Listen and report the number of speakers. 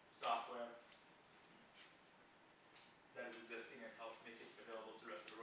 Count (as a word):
one